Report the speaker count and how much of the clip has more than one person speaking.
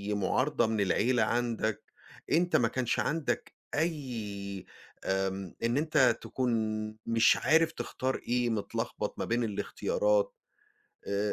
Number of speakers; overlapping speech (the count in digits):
1, no overlap